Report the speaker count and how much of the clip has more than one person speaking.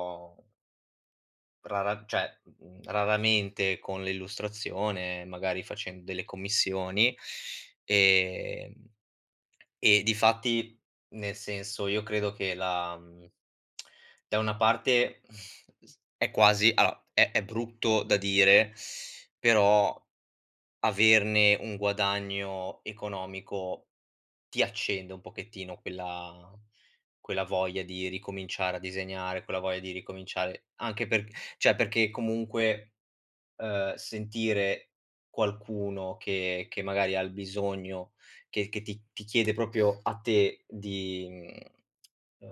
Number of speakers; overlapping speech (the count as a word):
one, no overlap